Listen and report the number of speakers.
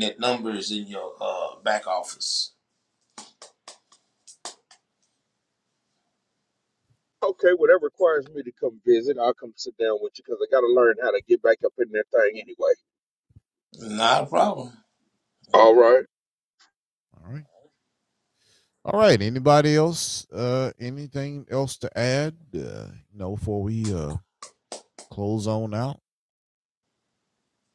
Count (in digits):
3